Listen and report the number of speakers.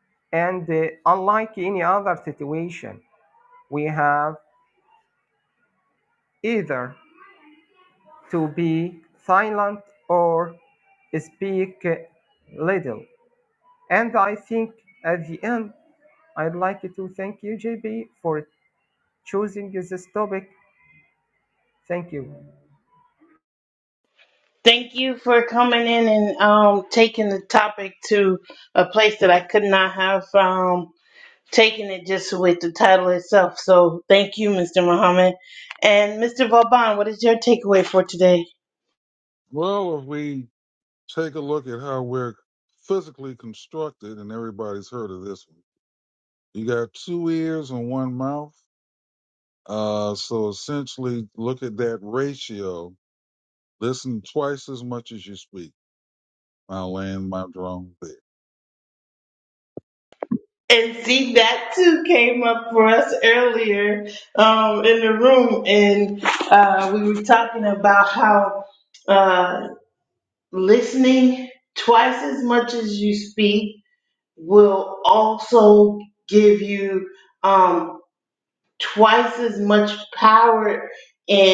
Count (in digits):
3